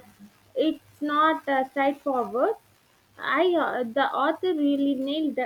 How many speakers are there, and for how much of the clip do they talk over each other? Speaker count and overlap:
1, no overlap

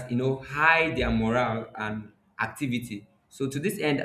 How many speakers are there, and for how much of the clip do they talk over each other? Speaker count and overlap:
1, no overlap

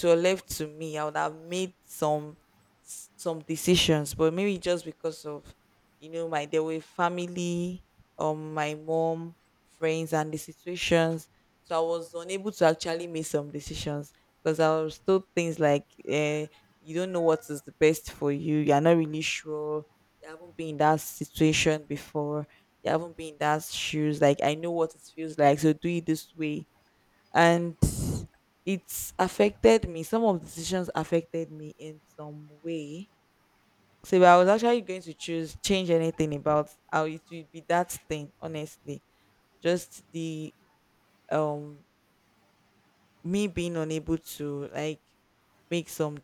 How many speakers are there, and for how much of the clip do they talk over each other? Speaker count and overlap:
1, no overlap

